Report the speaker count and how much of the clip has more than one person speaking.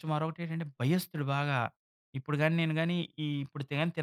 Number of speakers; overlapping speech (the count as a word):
one, no overlap